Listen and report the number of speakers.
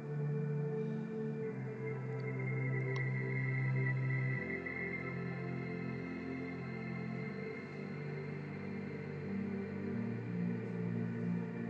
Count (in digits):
0